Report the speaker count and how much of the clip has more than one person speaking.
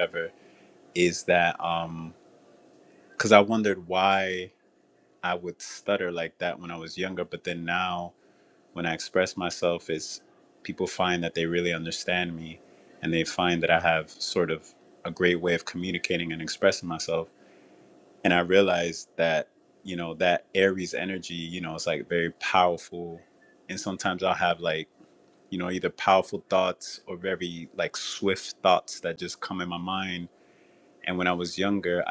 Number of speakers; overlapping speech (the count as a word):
one, no overlap